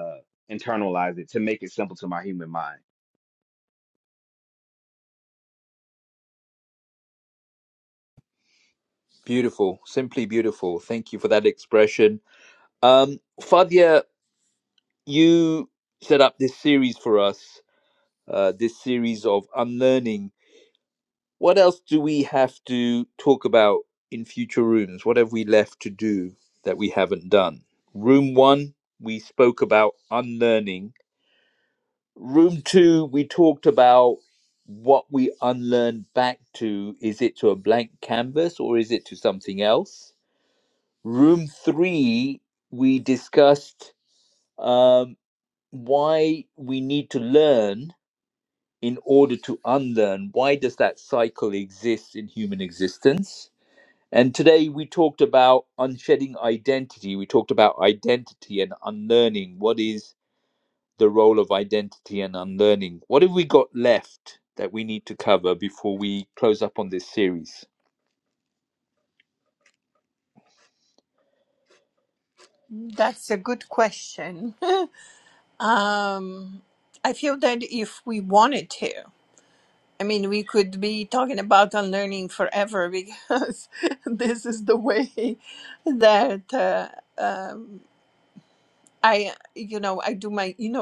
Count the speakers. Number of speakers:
three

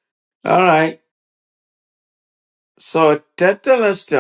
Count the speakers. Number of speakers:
one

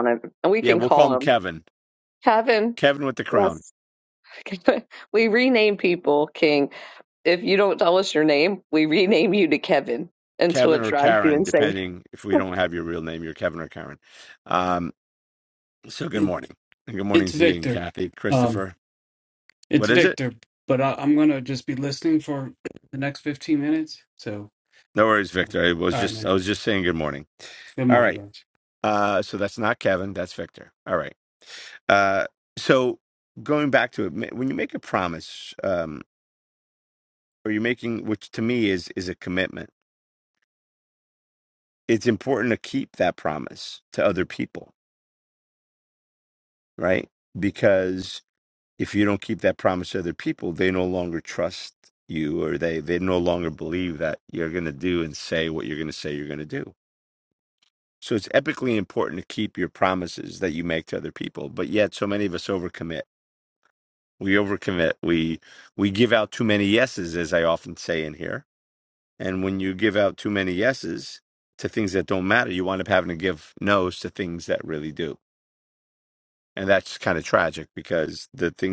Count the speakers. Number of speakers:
three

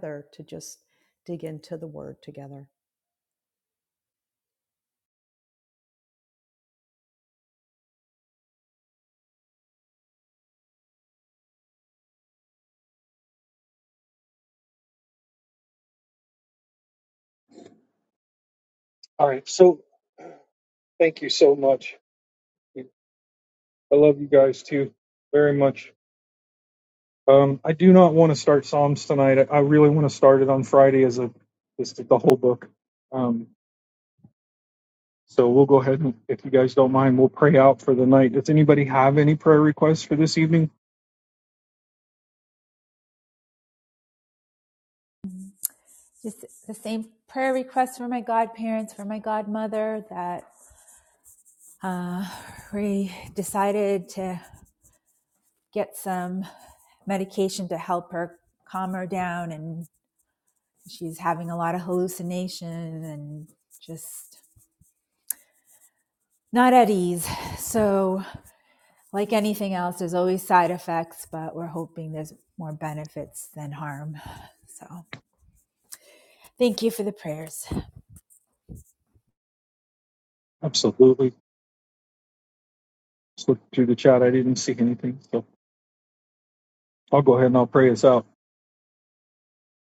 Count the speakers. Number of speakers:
three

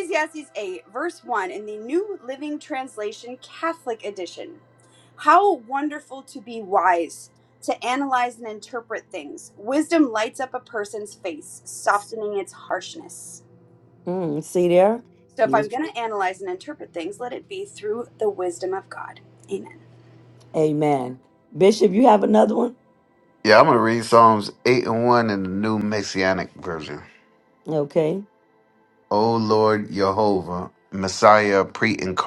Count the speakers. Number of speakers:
three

